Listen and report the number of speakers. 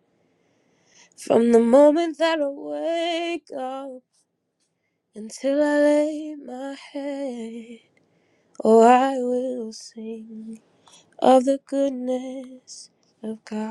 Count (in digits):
1